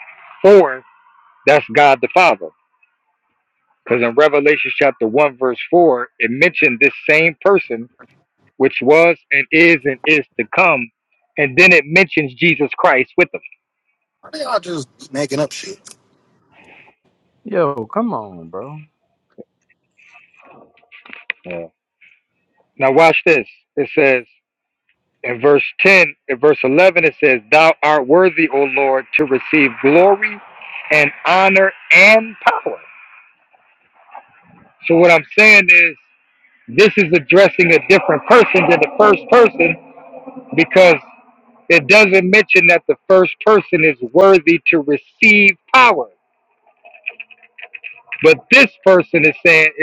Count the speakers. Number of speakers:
three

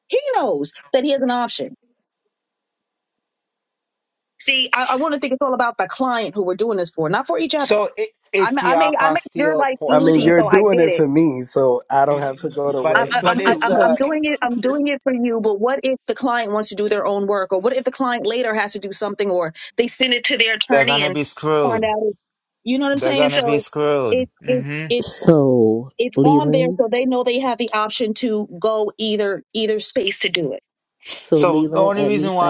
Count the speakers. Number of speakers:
four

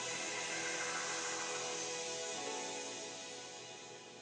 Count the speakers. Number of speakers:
zero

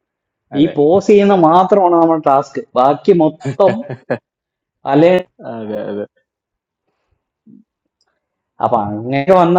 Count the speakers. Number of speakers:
two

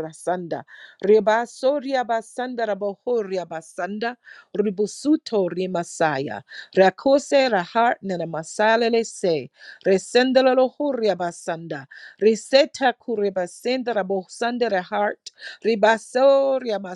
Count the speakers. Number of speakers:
one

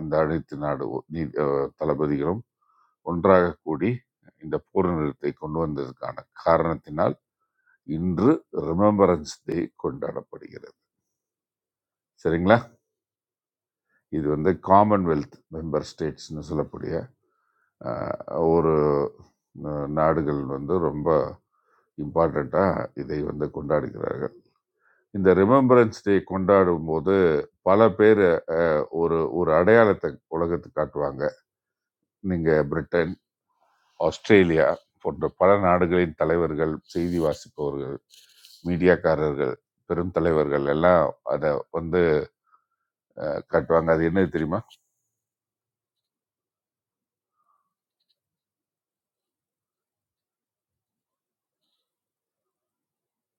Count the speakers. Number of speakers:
one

